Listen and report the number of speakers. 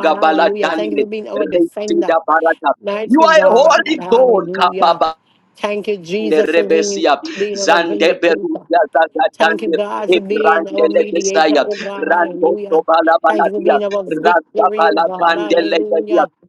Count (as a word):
two